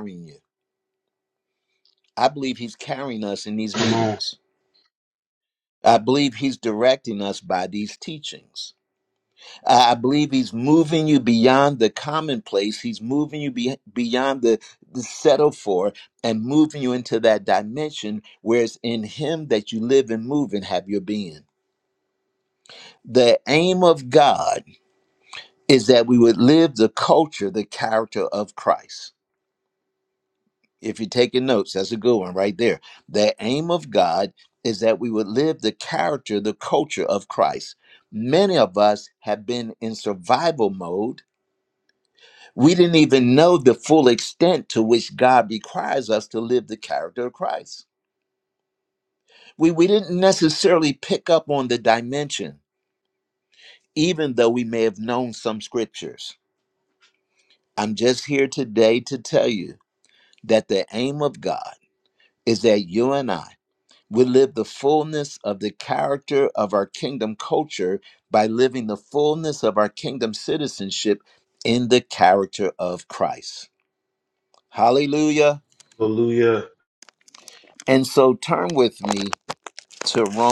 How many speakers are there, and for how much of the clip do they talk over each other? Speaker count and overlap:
two, about 1%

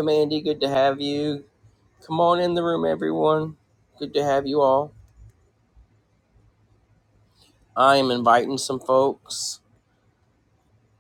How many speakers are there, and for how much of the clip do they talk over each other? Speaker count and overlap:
one, no overlap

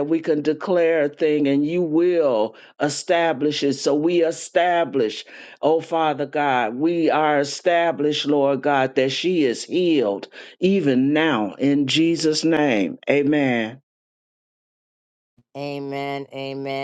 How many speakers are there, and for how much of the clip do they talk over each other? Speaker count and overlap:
two, no overlap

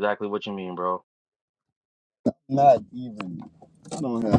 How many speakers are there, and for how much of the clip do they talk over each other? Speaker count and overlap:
two, no overlap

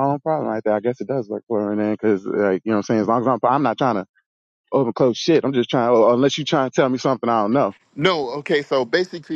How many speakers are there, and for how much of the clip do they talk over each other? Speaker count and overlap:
two, no overlap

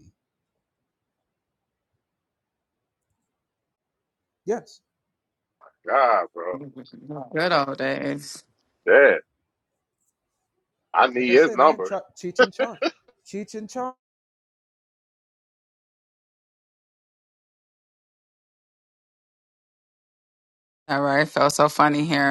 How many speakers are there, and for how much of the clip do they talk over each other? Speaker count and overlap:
three, about 3%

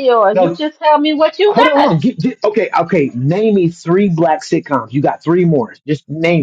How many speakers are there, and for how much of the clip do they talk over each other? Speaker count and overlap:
two, about 11%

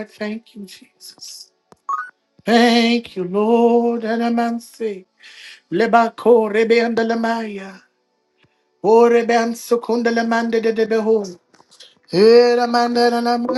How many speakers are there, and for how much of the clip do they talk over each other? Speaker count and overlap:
one, no overlap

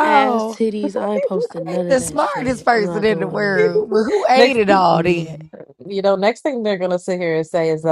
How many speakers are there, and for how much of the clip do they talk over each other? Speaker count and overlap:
three, about 47%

